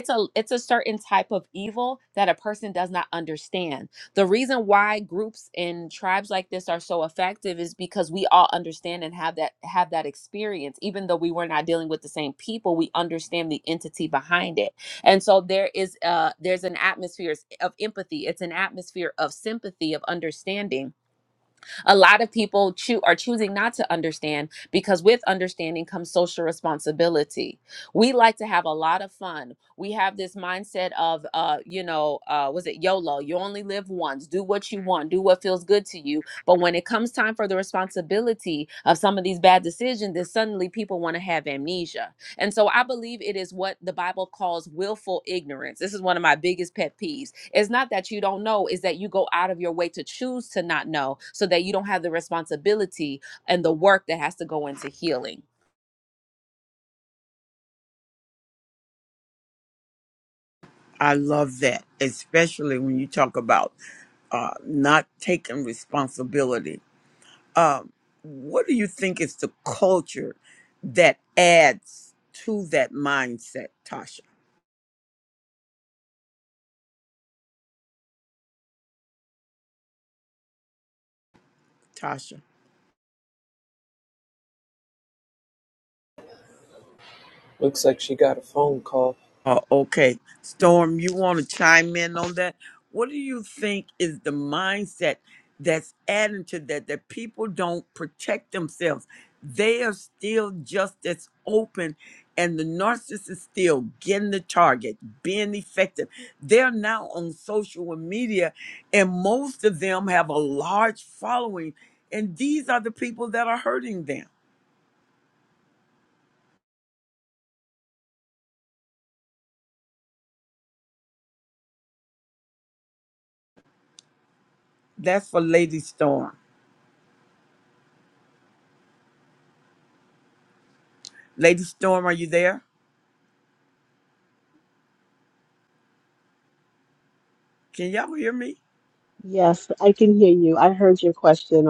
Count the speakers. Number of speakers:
4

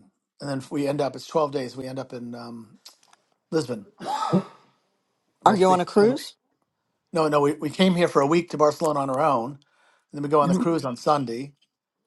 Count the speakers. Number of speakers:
2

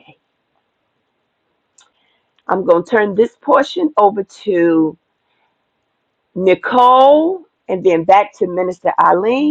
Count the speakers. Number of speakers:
1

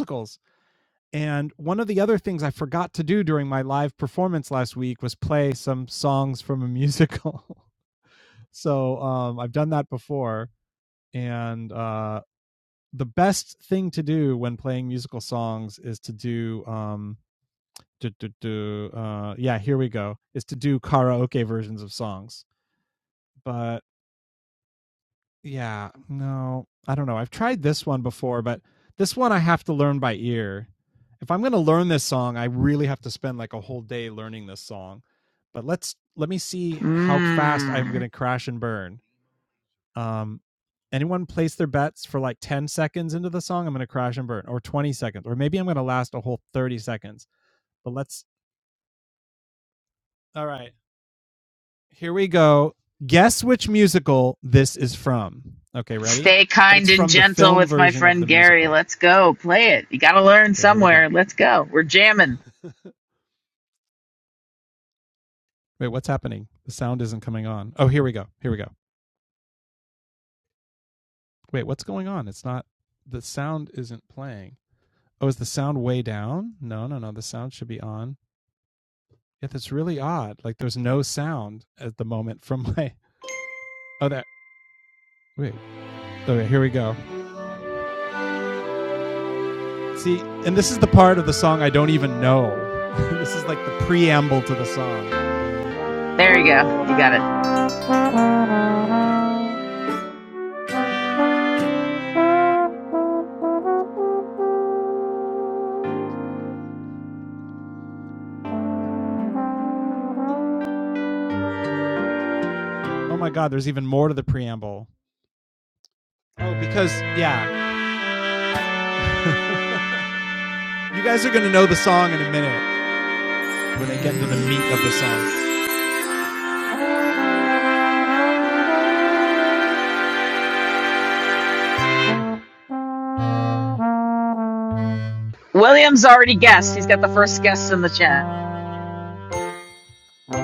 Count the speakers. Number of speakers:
2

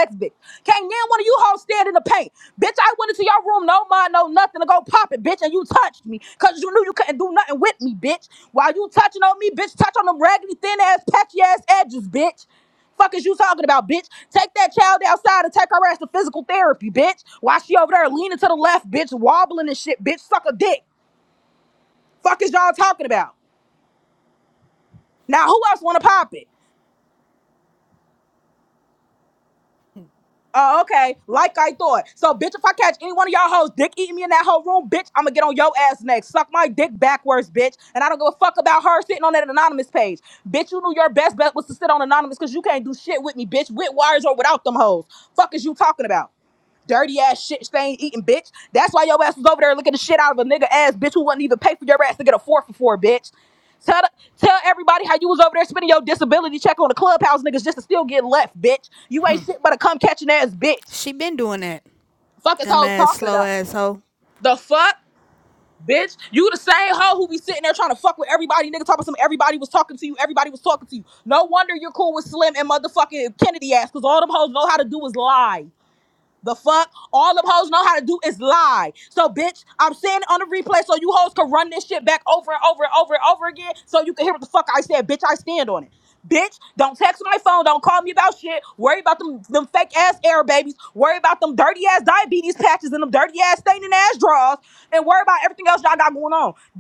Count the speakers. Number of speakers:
2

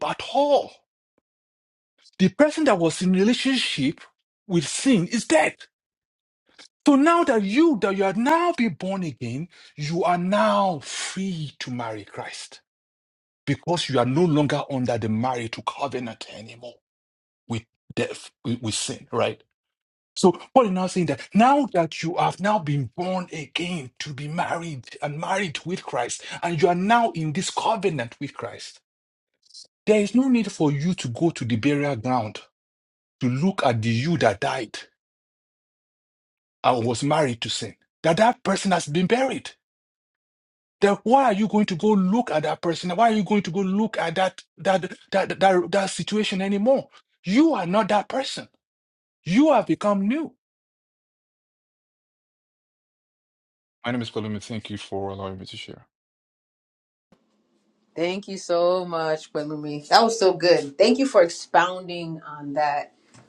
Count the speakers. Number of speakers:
2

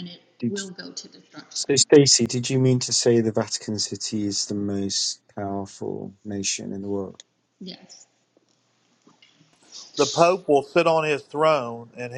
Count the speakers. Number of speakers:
3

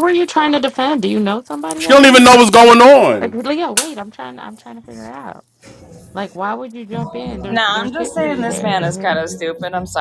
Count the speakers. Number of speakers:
3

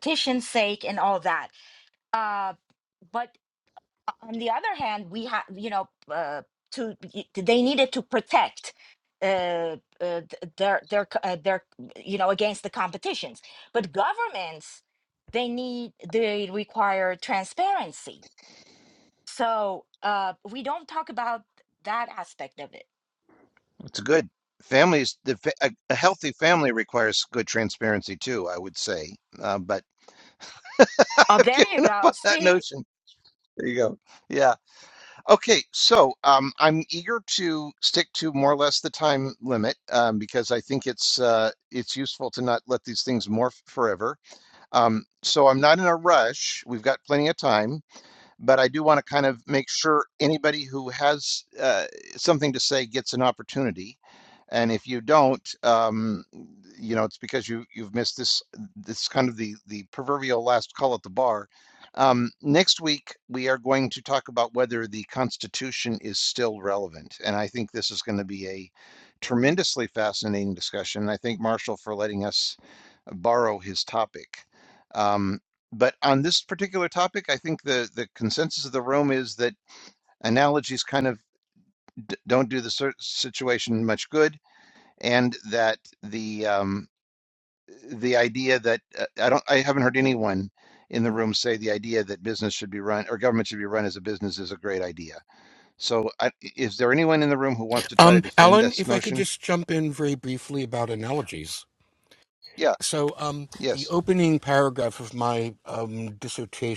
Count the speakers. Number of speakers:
3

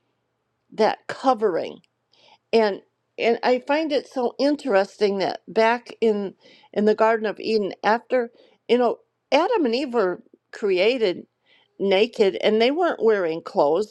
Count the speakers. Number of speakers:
1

